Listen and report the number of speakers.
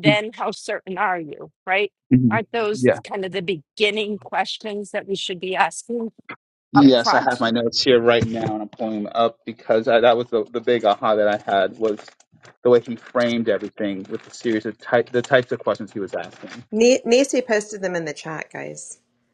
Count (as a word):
three